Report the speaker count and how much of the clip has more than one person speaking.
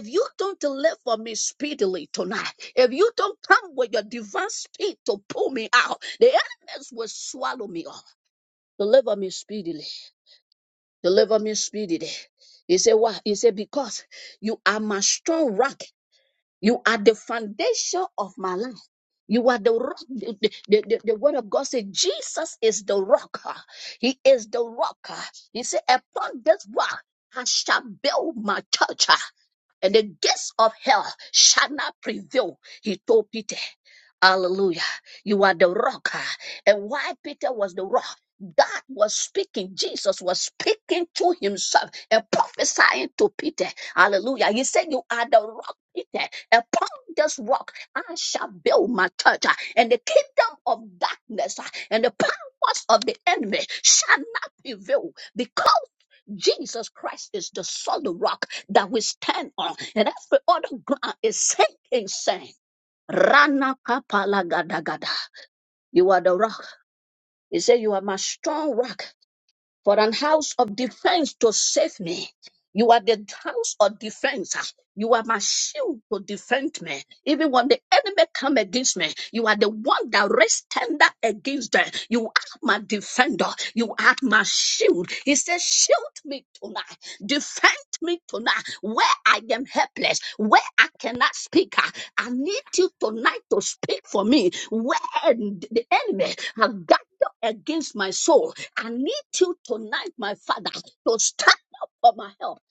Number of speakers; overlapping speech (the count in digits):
1, no overlap